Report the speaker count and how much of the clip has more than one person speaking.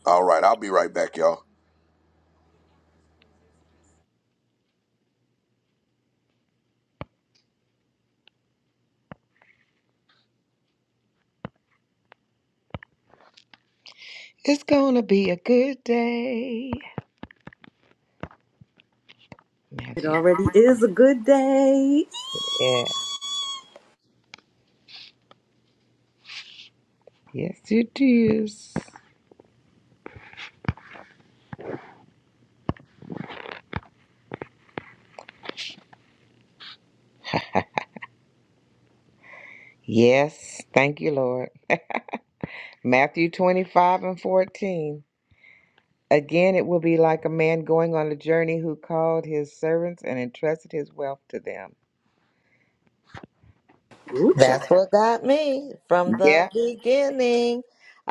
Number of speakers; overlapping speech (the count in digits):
4, about 1%